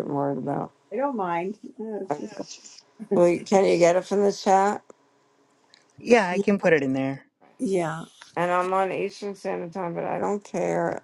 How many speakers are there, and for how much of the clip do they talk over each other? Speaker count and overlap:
3, about 4%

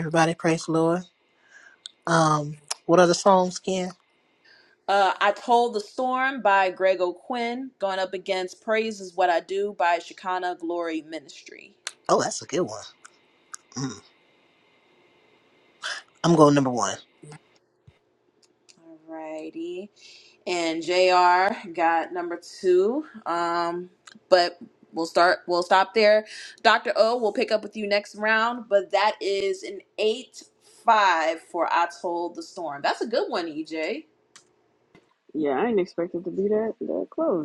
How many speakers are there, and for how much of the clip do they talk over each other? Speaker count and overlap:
3, no overlap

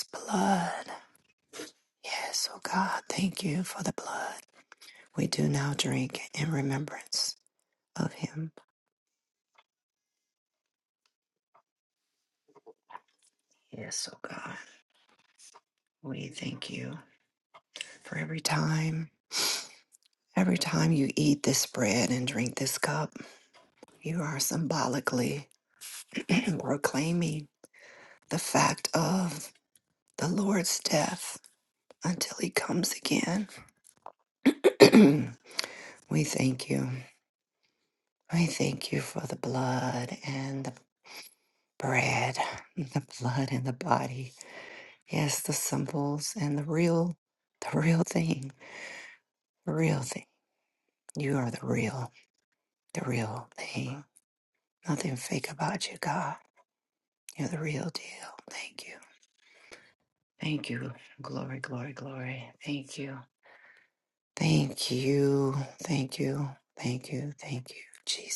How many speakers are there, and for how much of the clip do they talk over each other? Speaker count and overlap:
1, no overlap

